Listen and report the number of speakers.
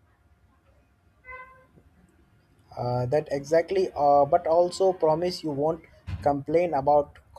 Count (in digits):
1